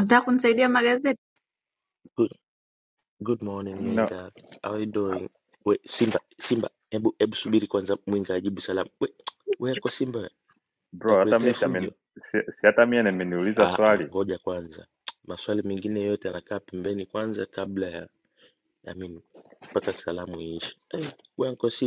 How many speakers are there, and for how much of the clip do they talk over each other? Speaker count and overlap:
three, about 8%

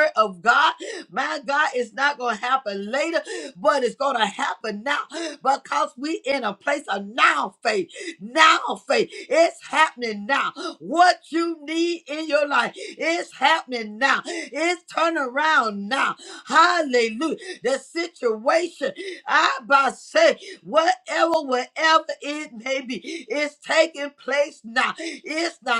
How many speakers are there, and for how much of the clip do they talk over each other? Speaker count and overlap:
one, no overlap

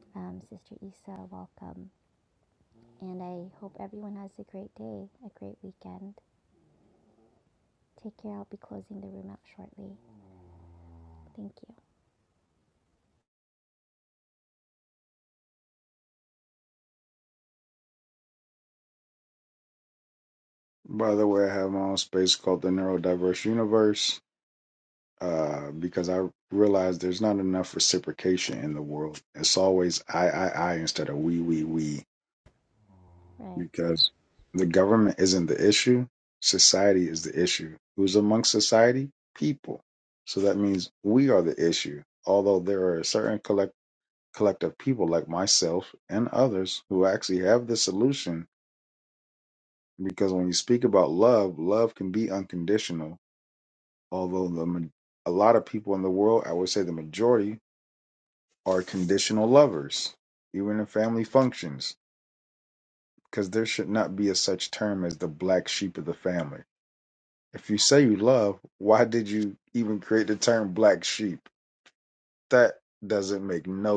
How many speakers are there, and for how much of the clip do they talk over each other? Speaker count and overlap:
two, under 1%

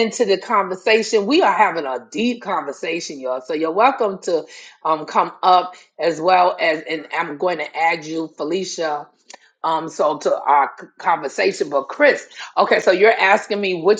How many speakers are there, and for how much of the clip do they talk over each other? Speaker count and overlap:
one, no overlap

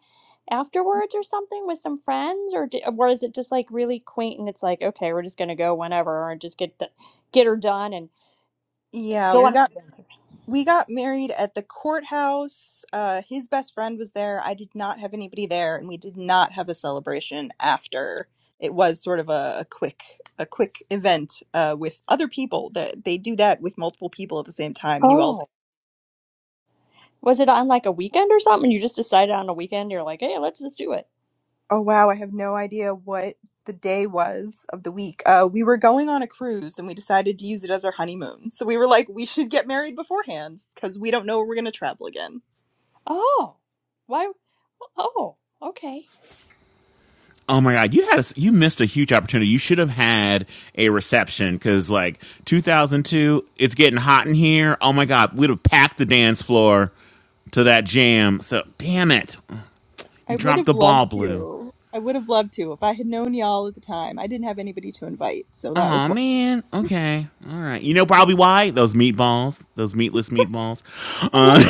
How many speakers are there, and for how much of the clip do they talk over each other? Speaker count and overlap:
three, about 4%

